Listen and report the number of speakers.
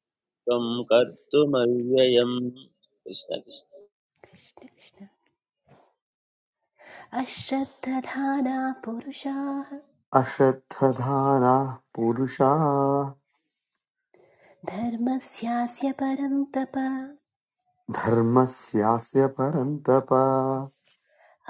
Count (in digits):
3